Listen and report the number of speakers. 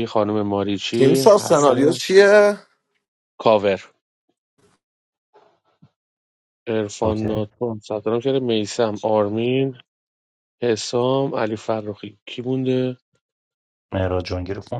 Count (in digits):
3